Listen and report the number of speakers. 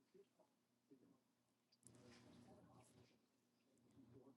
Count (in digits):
0